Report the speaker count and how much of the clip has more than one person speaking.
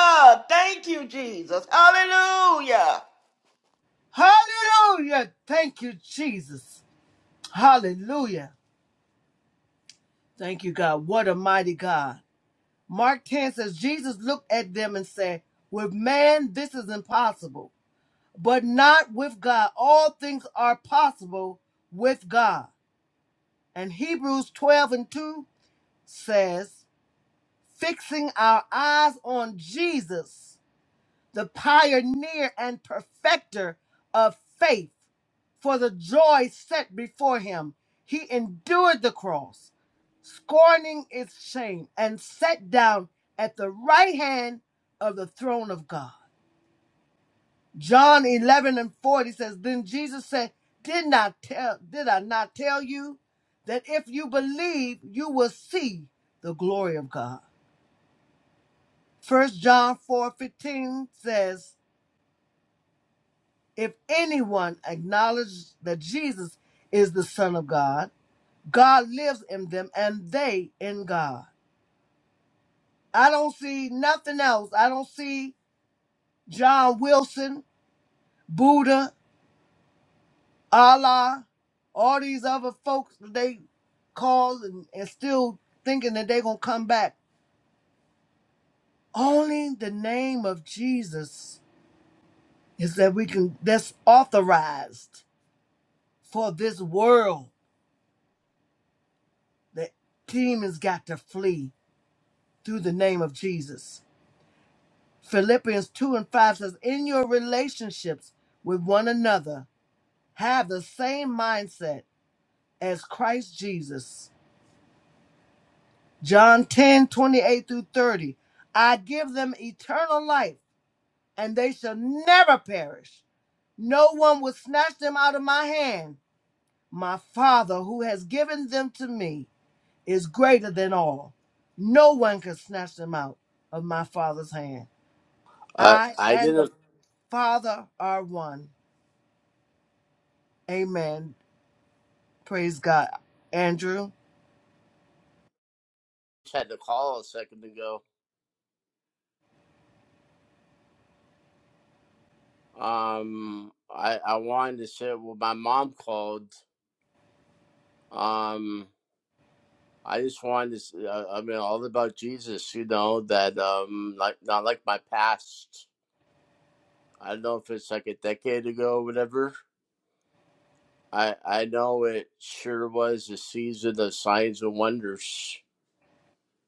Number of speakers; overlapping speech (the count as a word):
three, about 1%